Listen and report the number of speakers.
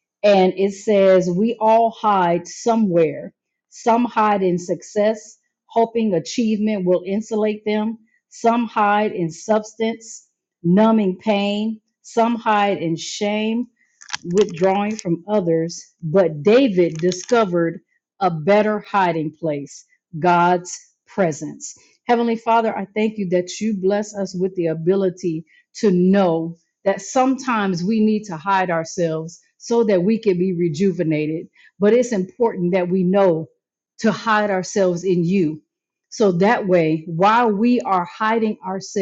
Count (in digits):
1